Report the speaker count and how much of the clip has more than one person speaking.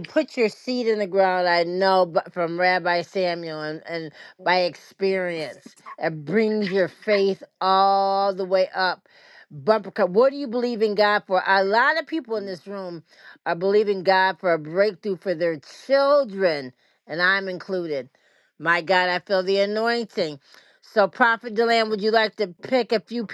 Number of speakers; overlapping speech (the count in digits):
1, no overlap